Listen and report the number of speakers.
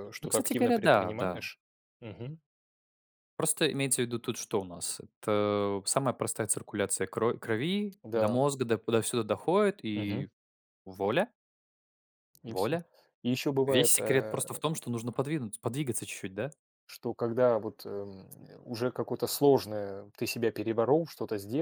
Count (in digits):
2